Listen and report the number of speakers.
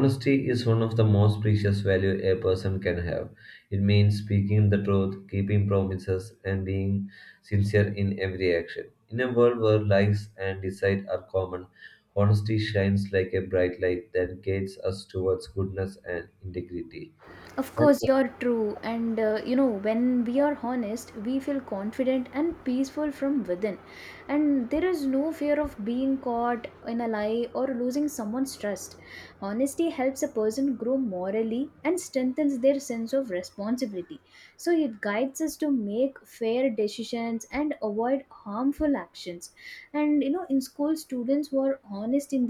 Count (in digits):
2